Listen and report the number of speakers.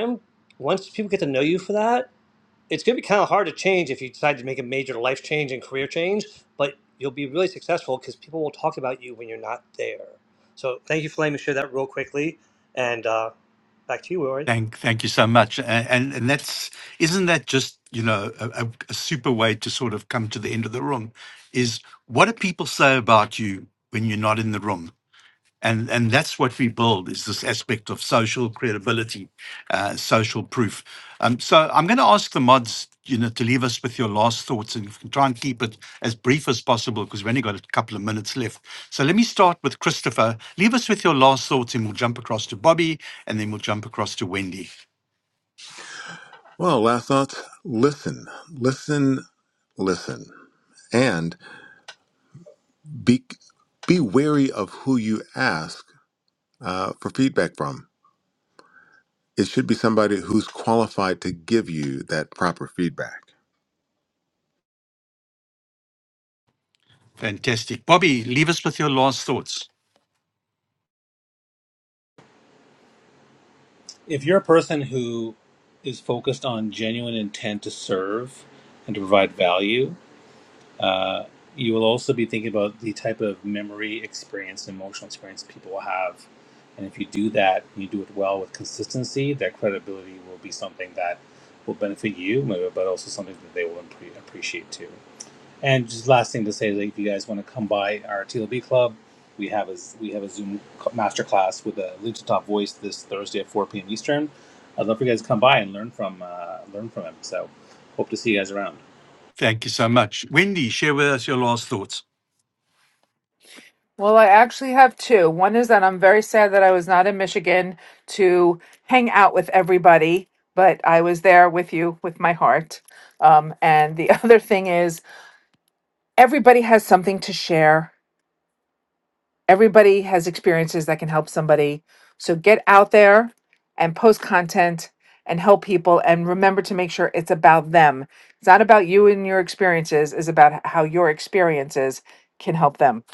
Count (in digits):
5